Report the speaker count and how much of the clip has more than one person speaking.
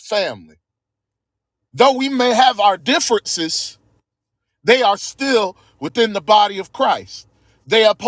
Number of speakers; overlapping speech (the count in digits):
1, no overlap